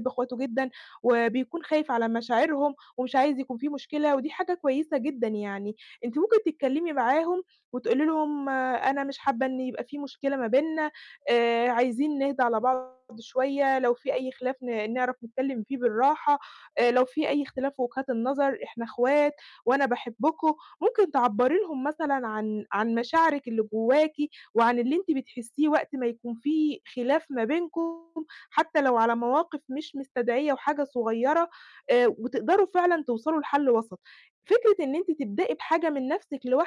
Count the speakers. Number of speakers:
1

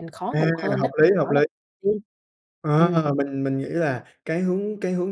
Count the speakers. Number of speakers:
2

